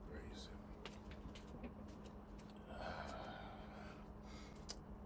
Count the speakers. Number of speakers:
zero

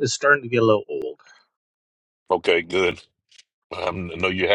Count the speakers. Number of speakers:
two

